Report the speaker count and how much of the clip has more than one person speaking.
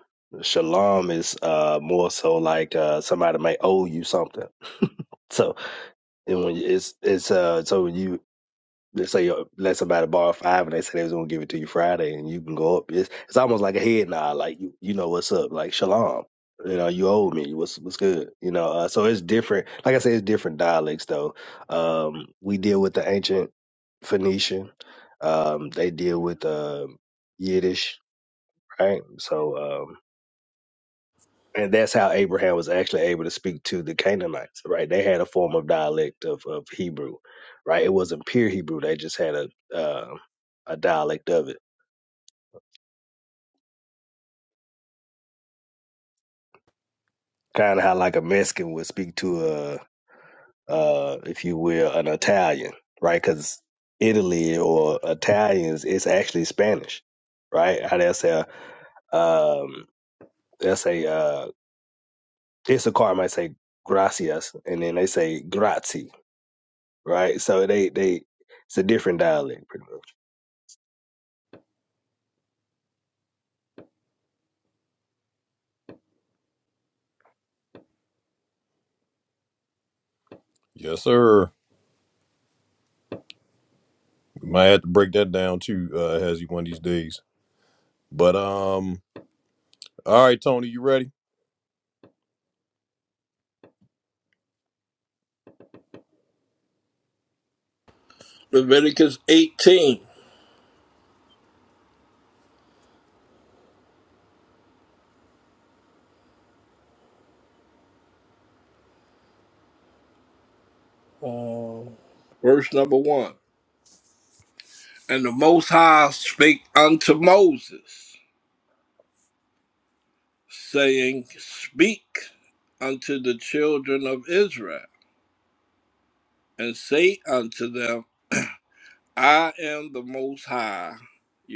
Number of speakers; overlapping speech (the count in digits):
3, no overlap